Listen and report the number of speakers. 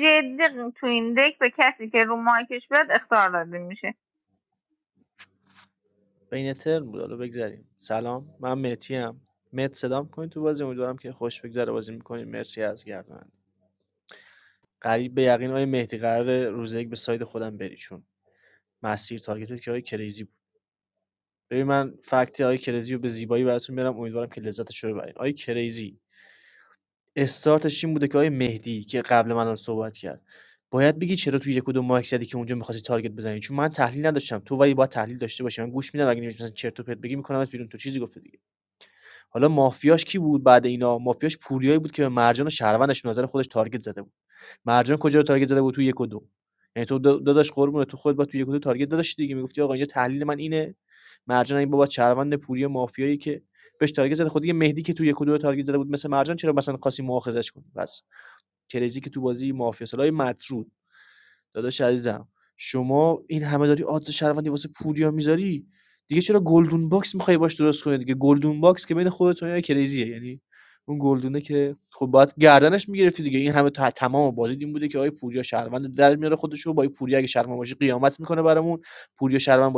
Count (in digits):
2